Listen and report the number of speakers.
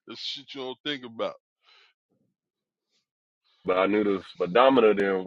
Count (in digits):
2